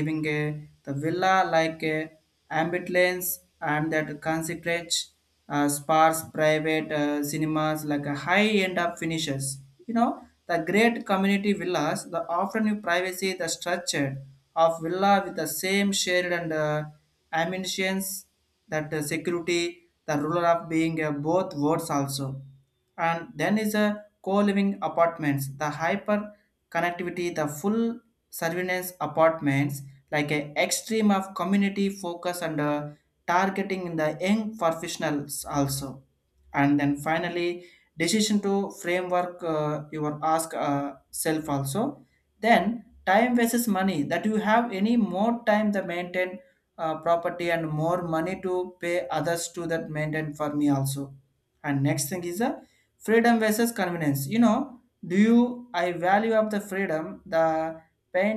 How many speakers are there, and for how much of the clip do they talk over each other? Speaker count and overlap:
1, no overlap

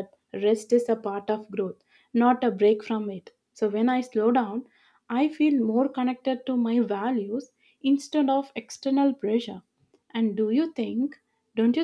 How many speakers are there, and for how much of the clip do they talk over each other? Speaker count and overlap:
1, no overlap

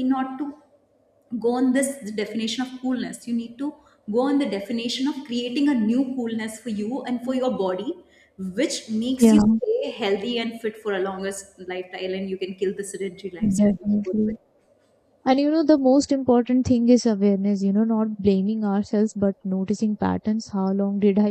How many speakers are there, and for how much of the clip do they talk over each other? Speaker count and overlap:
2, about 5%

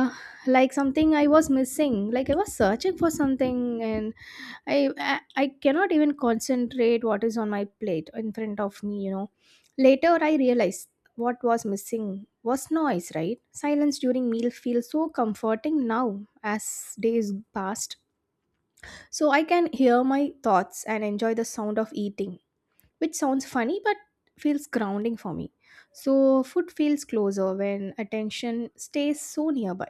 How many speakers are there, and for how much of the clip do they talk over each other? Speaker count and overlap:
1, no overlap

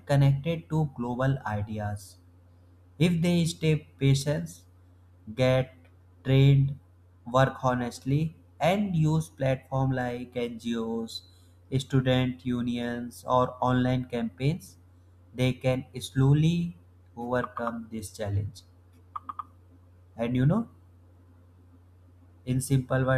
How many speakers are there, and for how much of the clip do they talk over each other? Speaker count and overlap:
1, no overlap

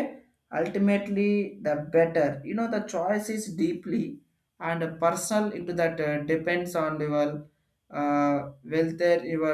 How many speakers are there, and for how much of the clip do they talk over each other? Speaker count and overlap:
1, no overlap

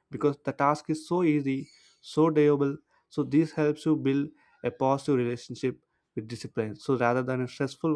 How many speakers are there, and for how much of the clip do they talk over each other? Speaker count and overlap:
1, no overlap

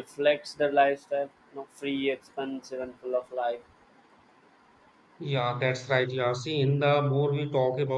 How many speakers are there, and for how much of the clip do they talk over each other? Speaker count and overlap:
2, no overlap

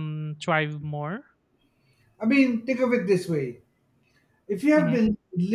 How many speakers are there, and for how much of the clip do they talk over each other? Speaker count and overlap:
2, about 4%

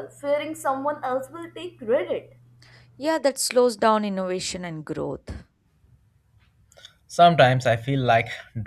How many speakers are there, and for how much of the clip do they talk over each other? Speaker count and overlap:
3, no overlap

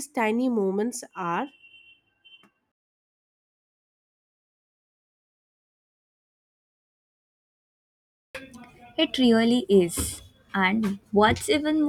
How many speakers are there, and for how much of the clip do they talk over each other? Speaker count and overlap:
2, no overlap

